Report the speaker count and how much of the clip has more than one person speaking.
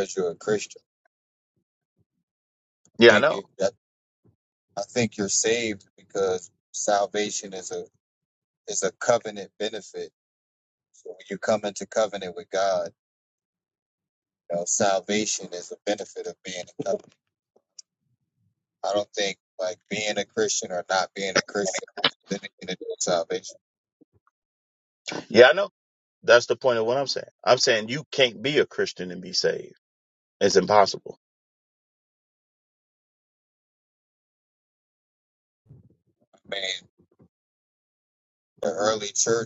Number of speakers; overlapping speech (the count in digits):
2, about 1%